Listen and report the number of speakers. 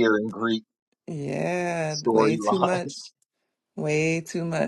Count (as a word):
two